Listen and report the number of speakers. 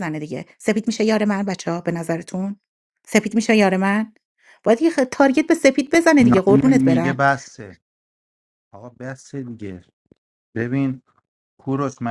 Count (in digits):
2